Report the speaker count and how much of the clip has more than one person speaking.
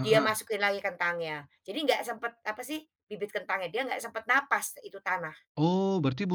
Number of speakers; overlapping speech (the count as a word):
two, about 4%